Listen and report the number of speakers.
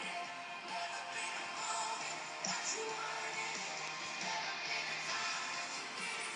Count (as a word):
zero